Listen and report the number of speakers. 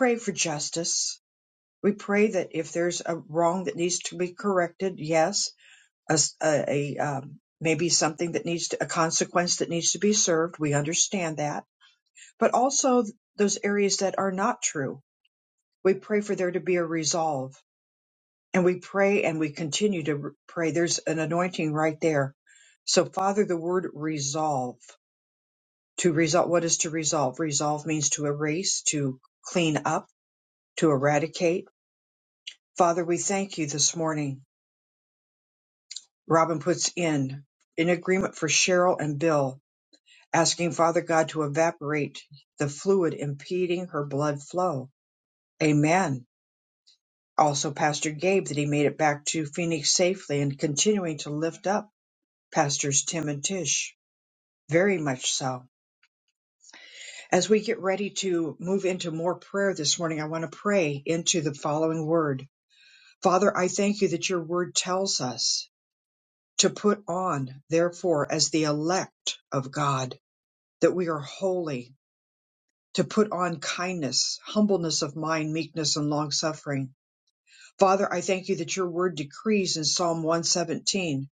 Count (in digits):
1